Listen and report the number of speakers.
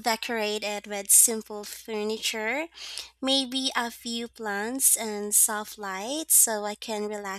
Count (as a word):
one